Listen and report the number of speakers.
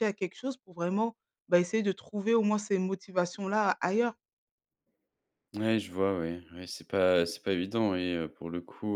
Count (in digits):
2